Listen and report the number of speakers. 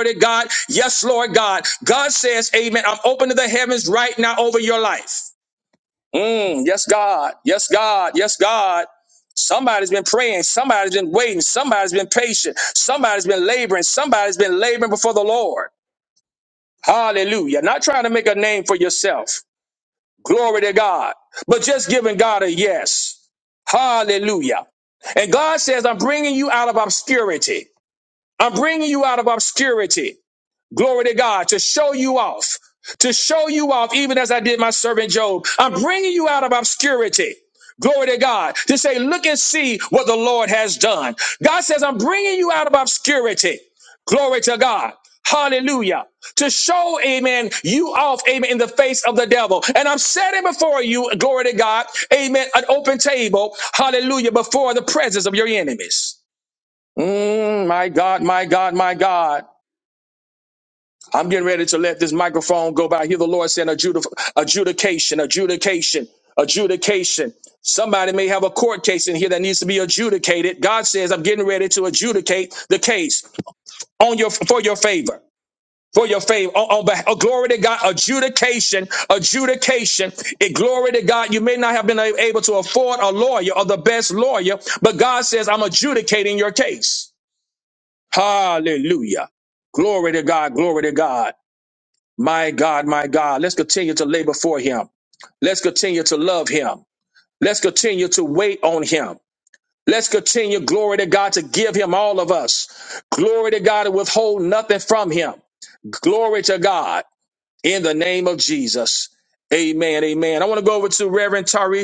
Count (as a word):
one